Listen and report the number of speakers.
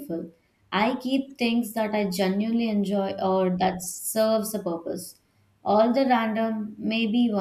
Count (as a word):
one